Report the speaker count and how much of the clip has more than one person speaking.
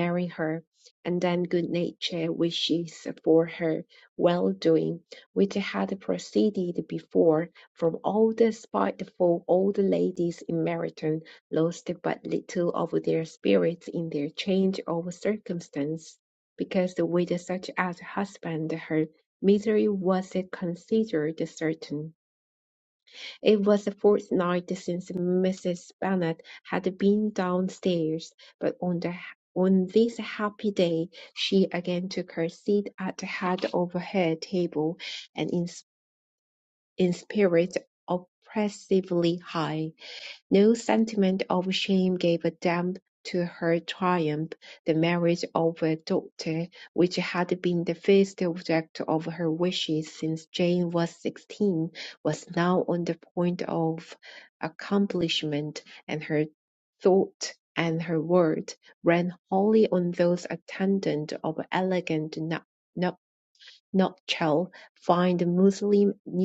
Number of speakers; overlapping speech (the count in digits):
1, no overlap